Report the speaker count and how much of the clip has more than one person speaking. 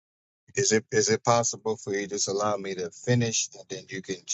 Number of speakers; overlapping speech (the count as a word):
one, no overlap